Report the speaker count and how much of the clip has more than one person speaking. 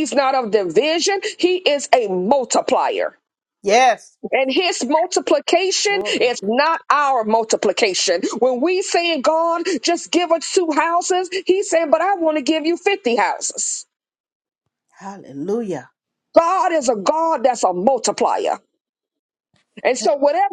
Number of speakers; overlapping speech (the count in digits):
2, about 2%